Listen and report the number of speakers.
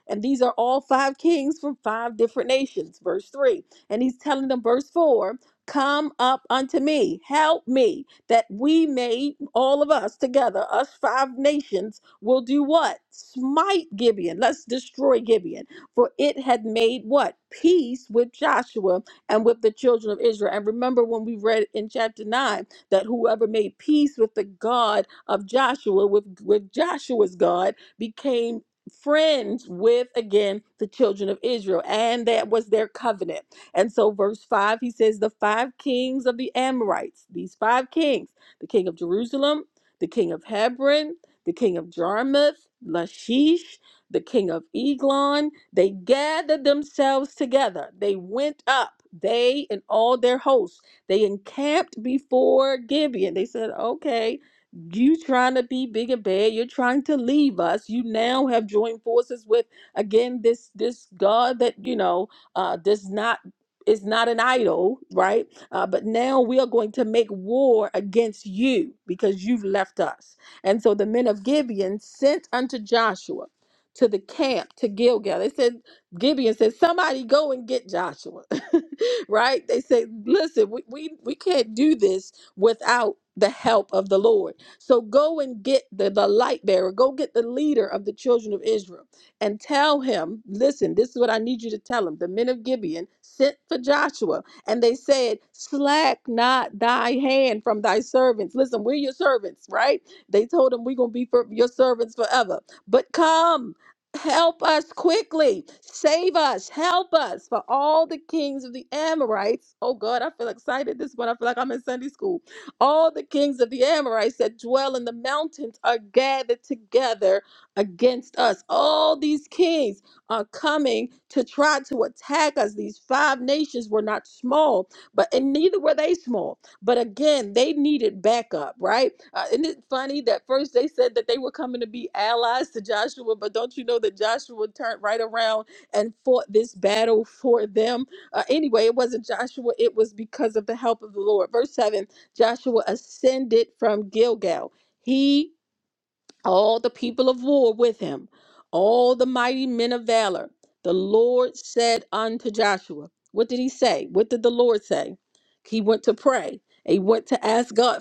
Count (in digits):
1